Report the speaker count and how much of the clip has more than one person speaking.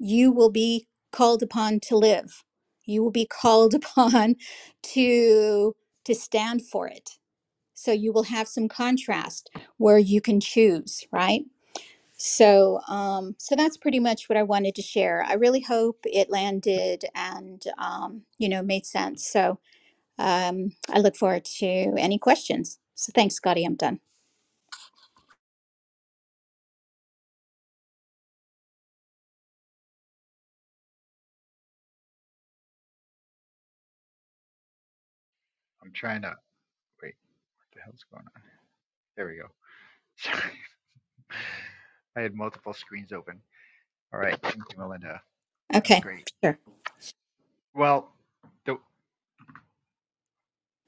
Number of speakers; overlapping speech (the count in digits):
2, under 1%